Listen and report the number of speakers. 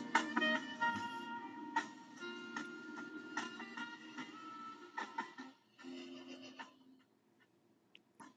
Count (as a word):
zero